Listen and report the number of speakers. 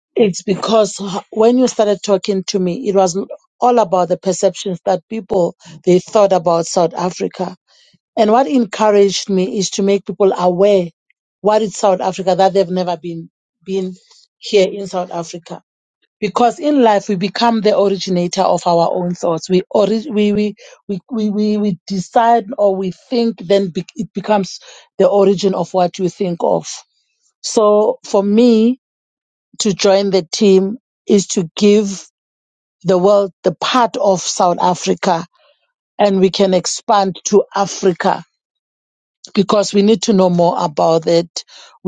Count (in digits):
1